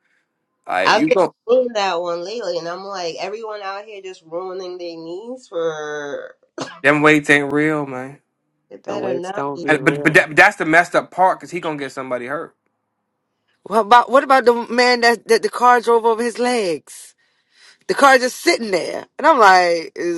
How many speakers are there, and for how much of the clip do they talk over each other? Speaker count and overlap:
three, about 9%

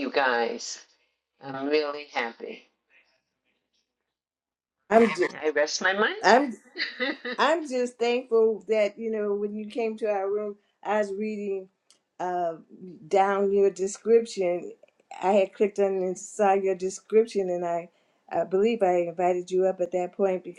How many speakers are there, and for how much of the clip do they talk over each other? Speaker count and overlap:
two, no overlap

